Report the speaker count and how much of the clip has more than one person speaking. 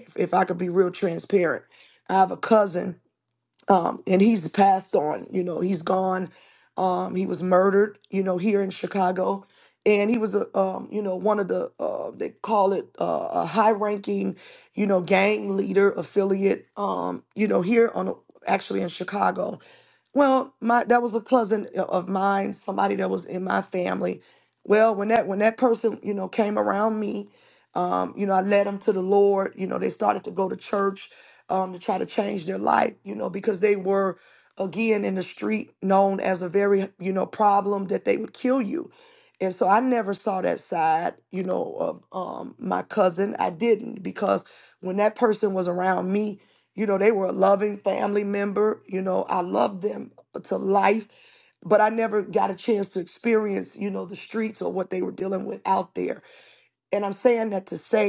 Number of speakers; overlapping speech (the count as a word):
one, no overlap